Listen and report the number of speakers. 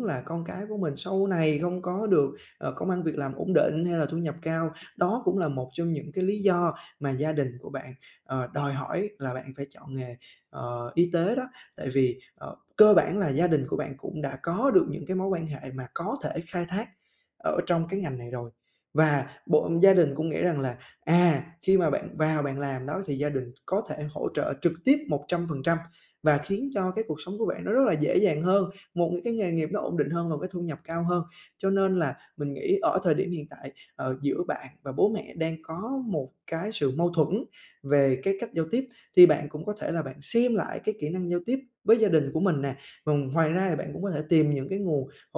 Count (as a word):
one